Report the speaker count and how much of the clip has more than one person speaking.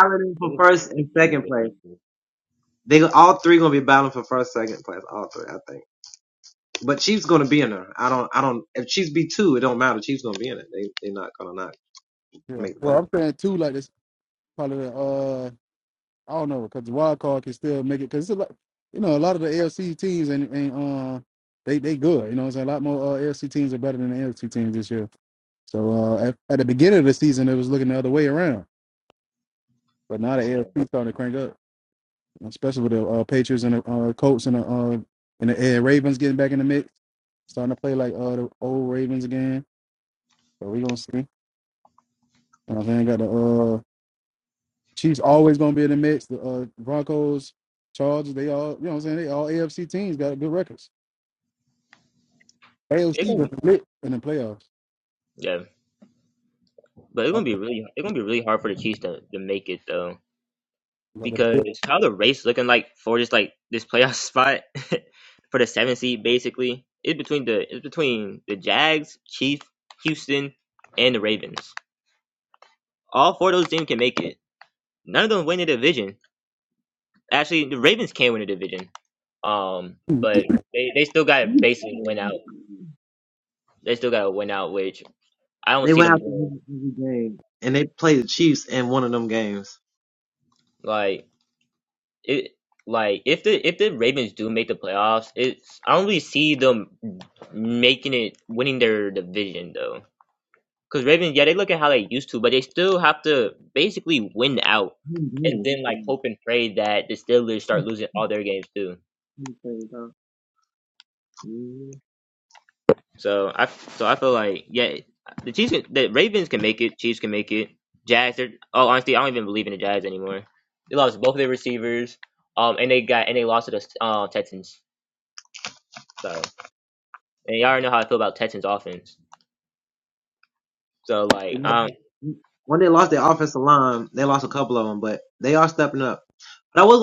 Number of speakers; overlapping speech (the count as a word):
three, about 2%